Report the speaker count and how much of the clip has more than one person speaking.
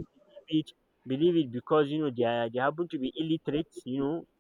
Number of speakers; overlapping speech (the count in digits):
1, no overlap